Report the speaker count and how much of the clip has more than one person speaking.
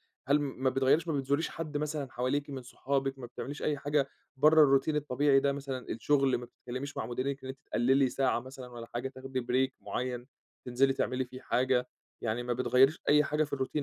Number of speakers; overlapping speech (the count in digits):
1, no overlap